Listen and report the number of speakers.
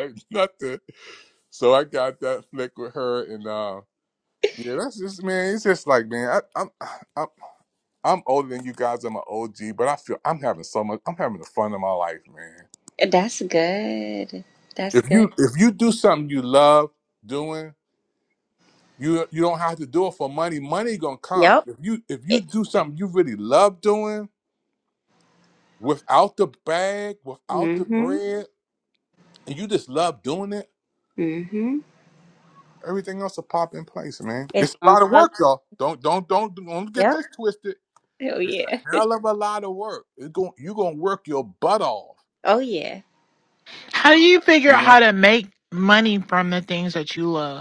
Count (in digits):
3